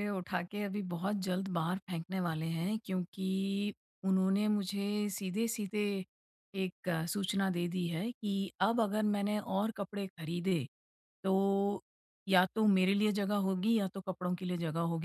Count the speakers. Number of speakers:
1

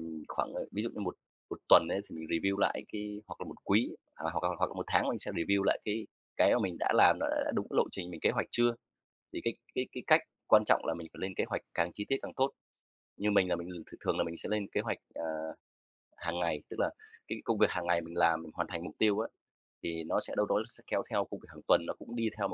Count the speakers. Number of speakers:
1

